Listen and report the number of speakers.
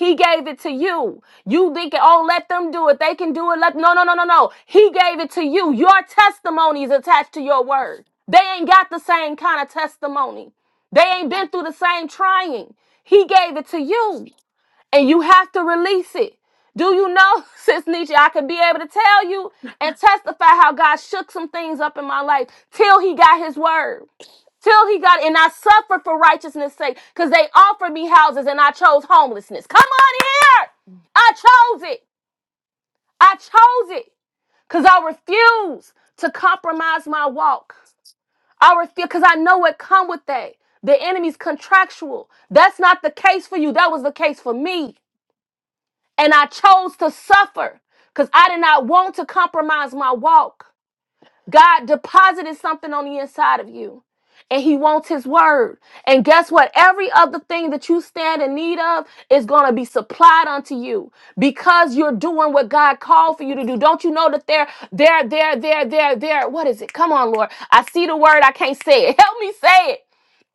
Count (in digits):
1